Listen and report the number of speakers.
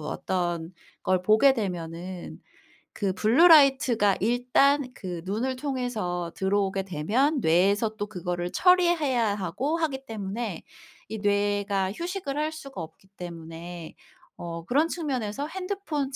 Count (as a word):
one